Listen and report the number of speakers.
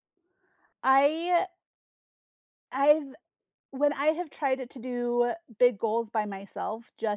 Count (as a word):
one